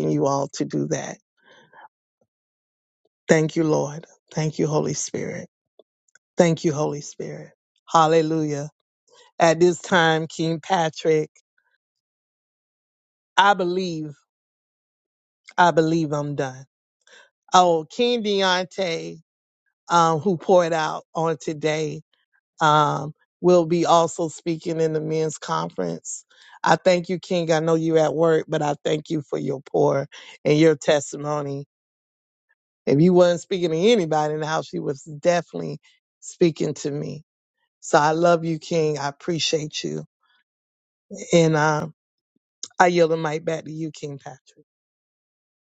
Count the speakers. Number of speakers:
1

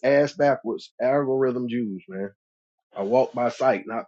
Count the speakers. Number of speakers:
1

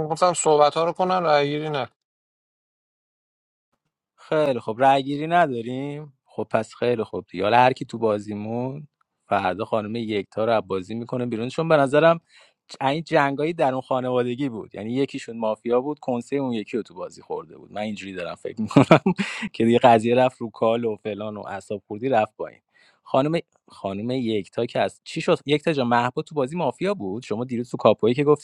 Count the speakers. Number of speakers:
2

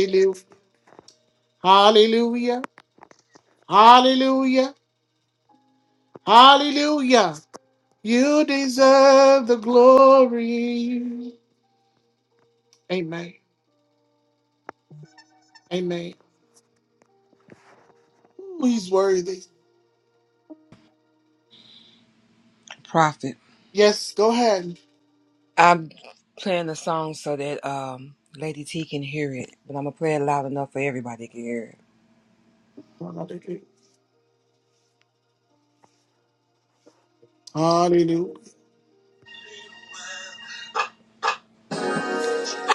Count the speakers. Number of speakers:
2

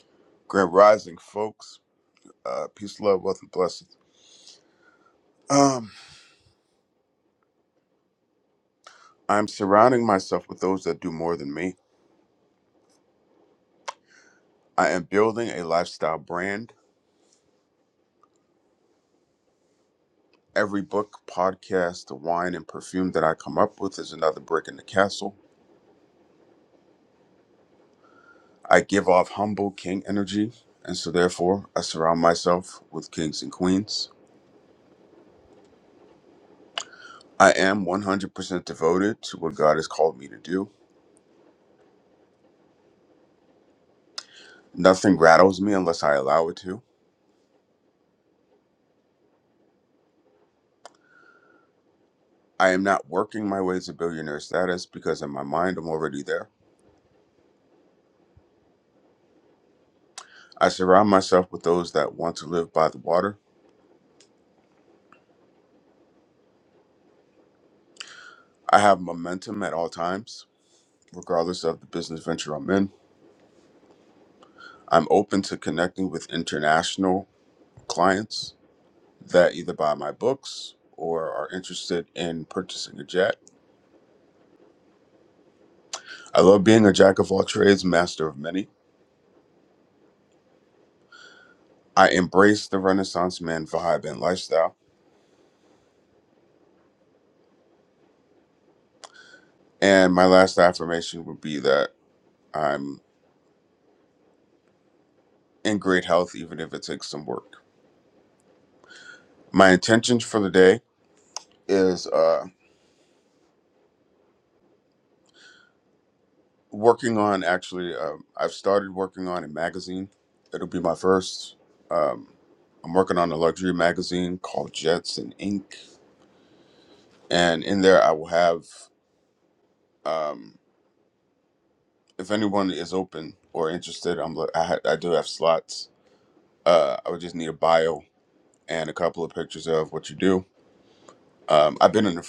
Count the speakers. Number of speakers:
1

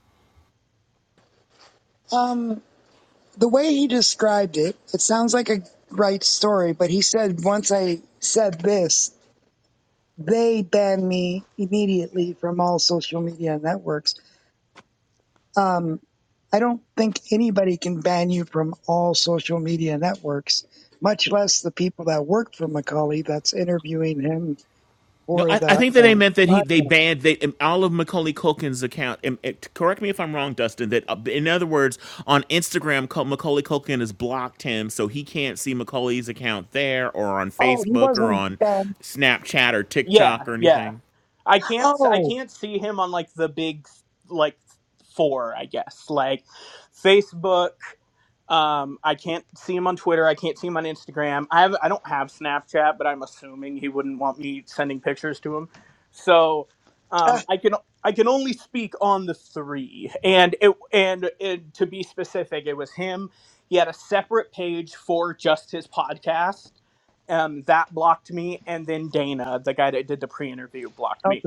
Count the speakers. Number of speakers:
3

